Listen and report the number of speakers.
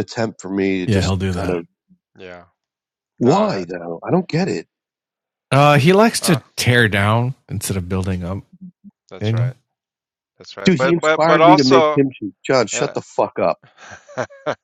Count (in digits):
3